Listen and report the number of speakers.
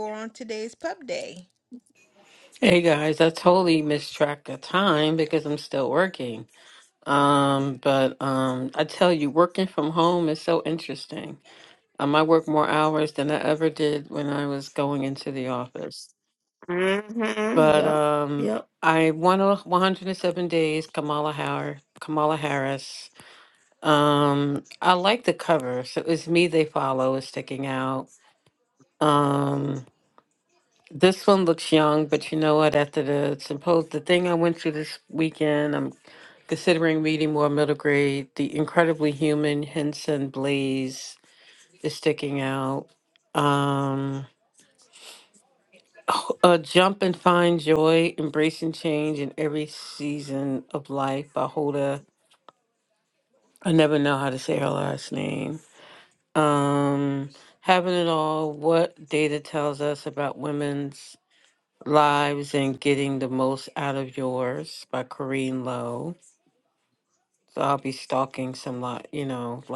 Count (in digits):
3